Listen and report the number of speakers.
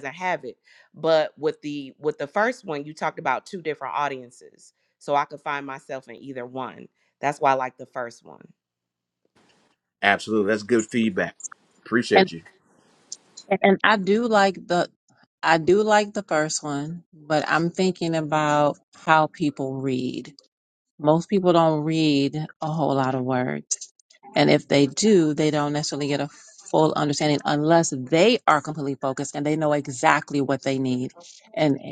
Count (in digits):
3